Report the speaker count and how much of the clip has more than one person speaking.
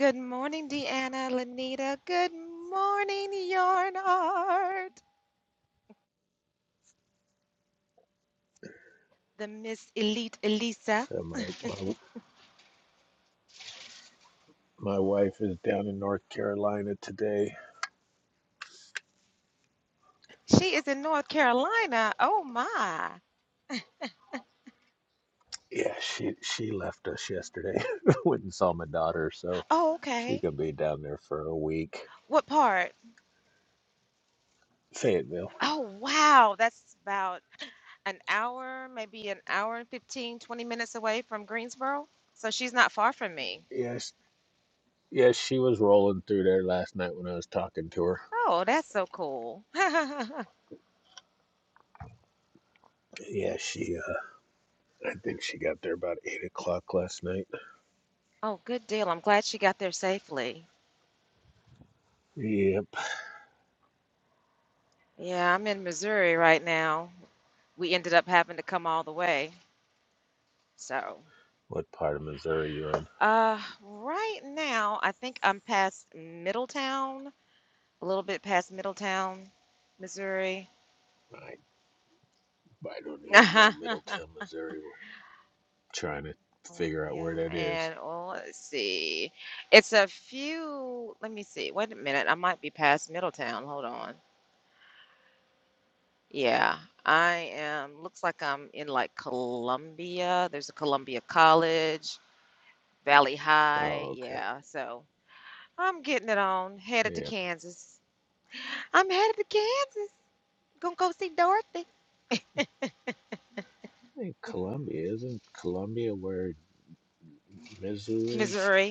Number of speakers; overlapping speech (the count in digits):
2, about 2%